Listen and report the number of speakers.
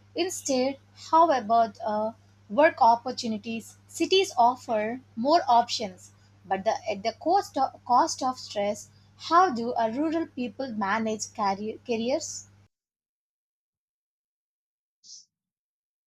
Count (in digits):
1